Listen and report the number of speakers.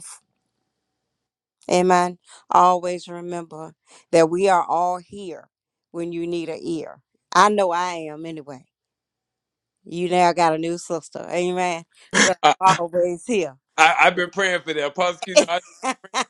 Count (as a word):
two